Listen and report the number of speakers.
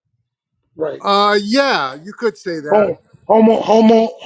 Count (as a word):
two